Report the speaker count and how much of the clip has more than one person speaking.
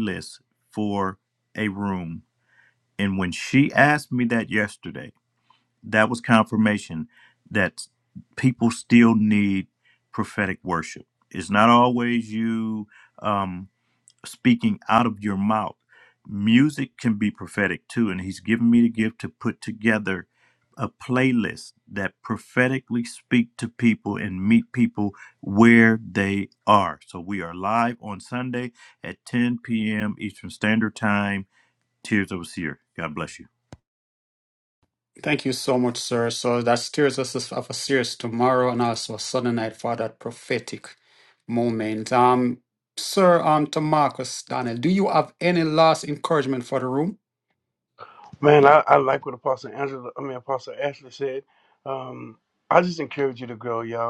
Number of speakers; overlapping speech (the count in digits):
3, no overlap